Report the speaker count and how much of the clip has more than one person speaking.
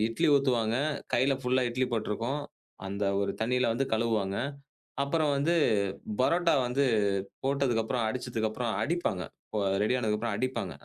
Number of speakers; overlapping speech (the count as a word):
one, no overlap